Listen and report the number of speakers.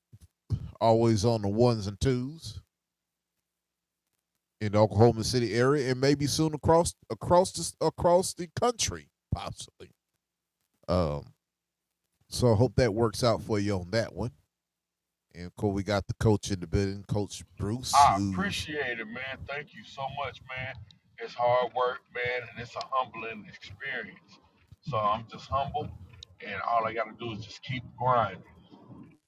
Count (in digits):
2